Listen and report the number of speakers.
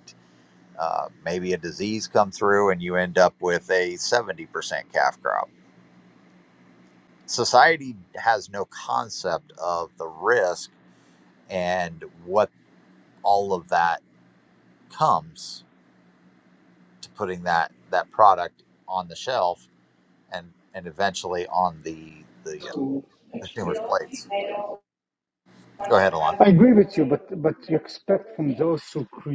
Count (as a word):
two